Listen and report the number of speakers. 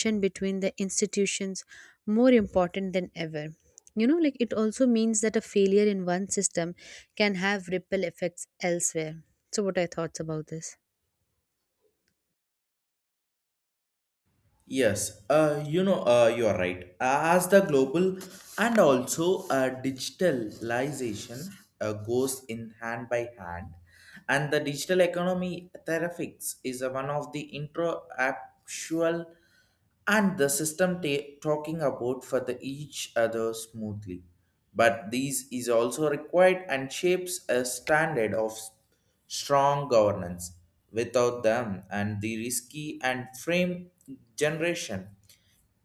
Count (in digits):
2